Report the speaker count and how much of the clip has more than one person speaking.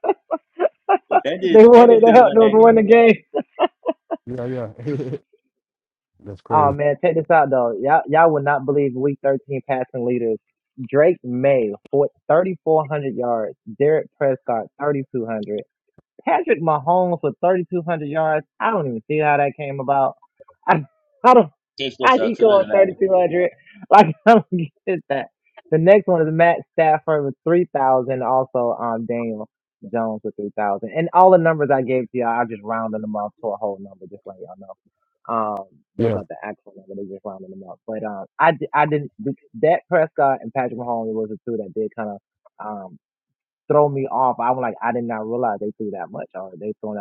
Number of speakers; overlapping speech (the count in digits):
3, about 6%